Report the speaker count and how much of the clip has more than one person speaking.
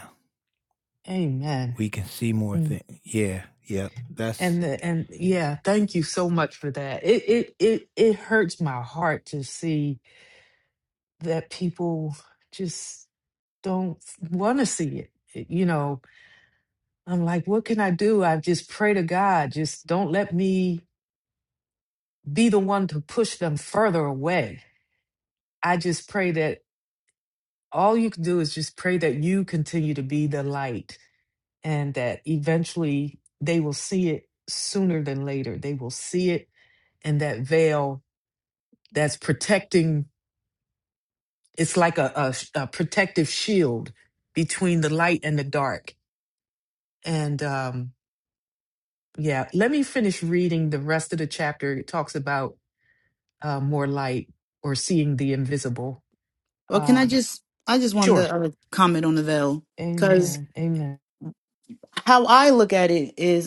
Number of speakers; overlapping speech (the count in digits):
3, about 2%